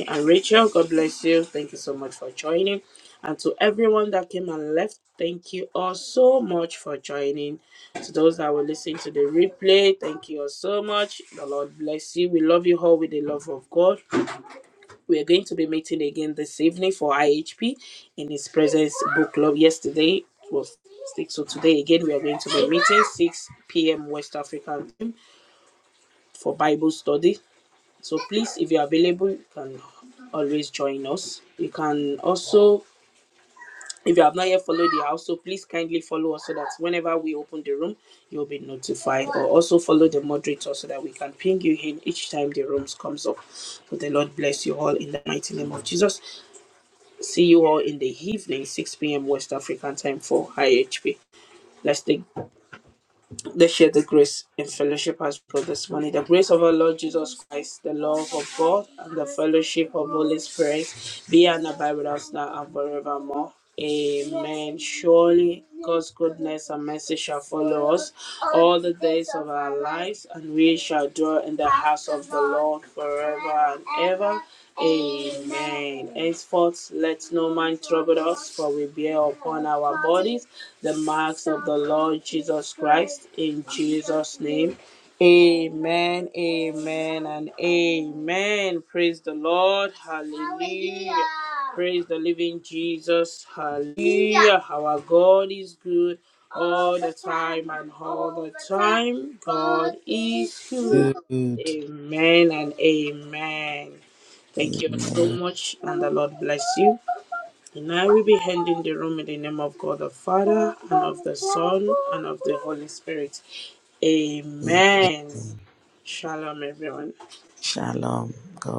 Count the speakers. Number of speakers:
2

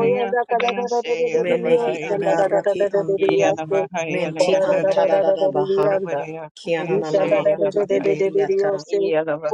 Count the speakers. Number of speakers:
3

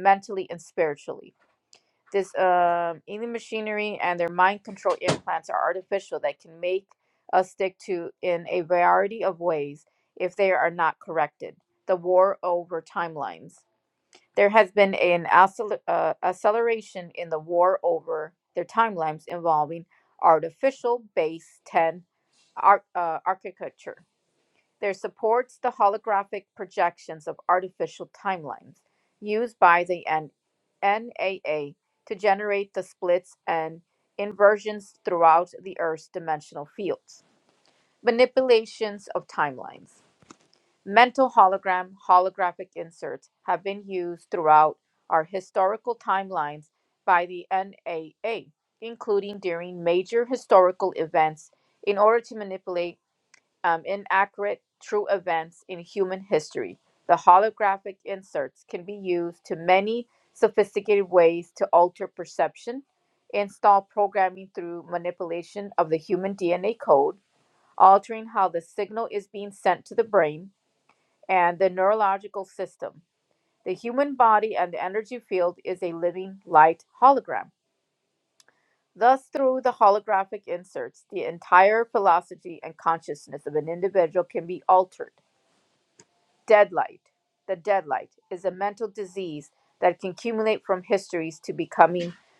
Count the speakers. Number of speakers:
1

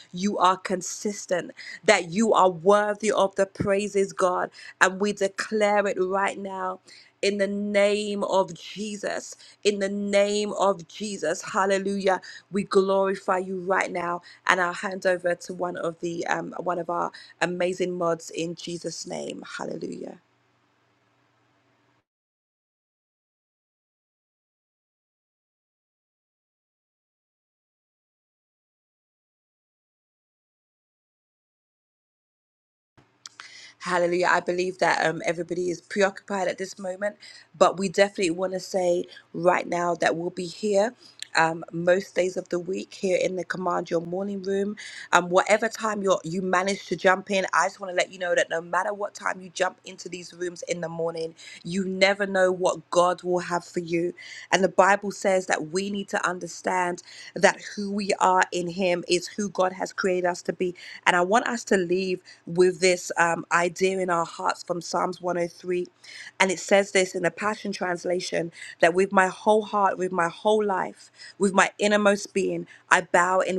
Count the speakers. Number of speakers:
1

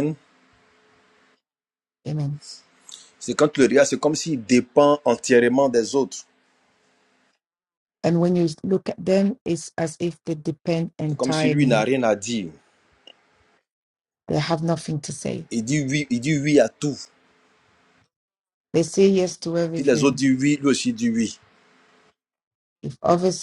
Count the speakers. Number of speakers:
2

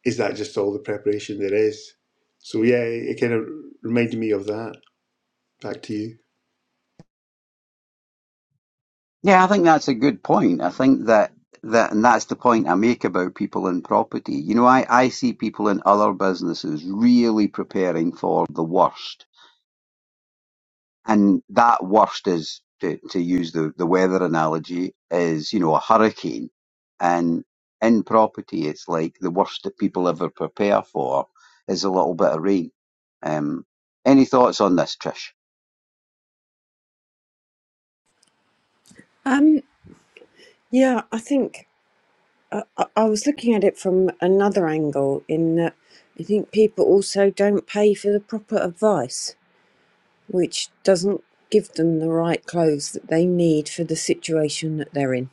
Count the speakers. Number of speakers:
3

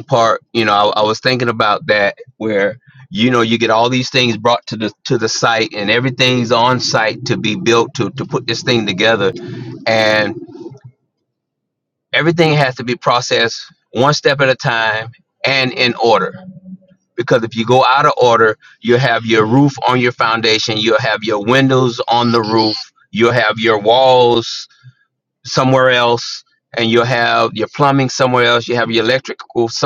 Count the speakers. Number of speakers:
1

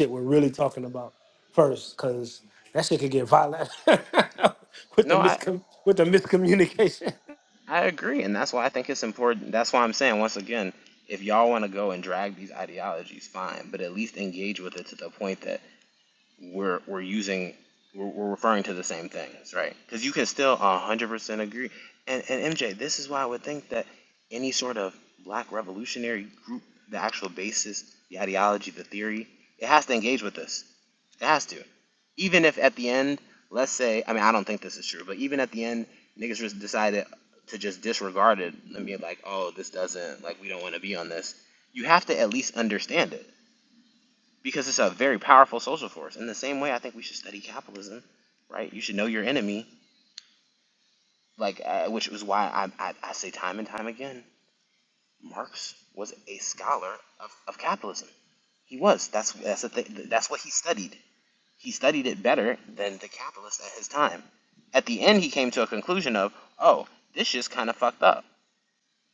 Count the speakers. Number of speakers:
2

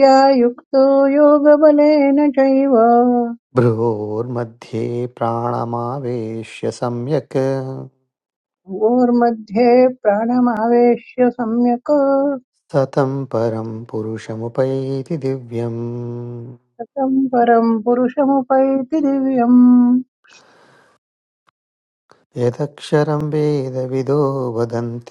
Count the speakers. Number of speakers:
2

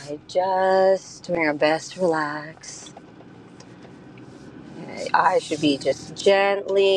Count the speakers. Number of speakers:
1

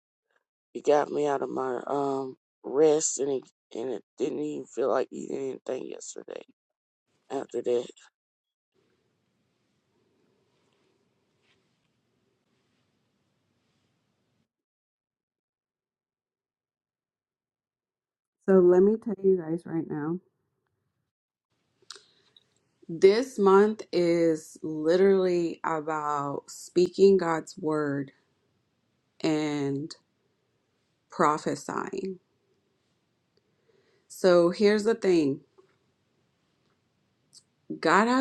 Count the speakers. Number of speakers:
2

